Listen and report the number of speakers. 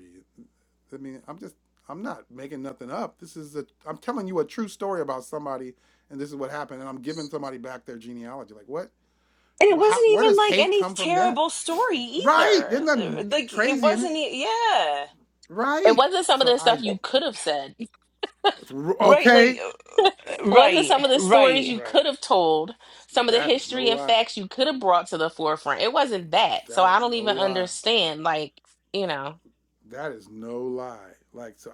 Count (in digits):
3